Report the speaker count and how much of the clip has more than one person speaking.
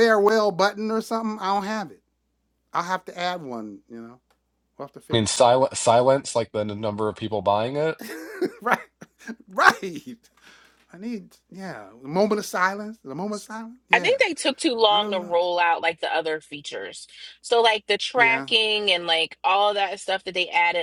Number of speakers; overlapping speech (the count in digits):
3, about 7%